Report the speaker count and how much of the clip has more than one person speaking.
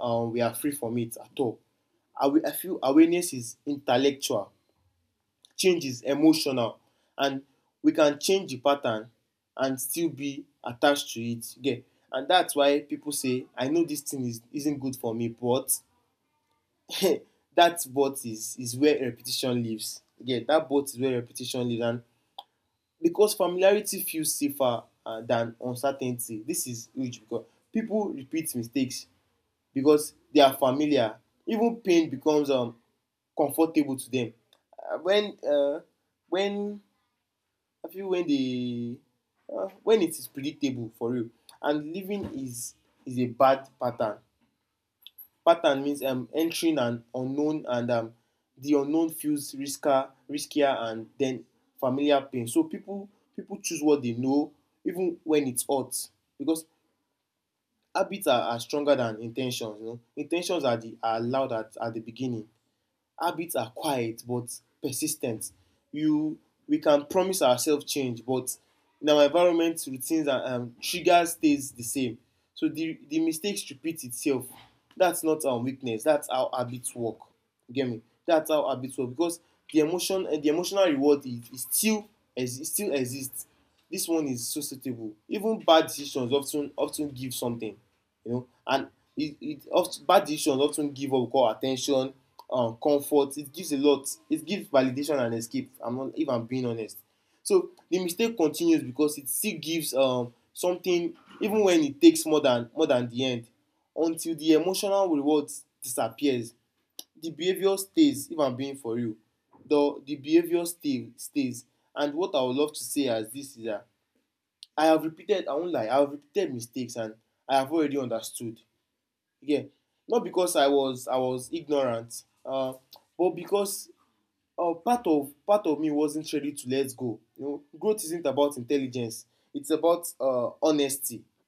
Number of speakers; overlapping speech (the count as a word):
one, no overlap